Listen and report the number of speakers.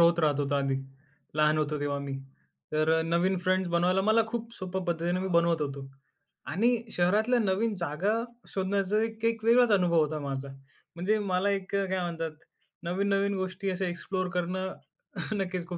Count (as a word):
one